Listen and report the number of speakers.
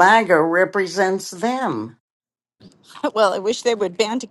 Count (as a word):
two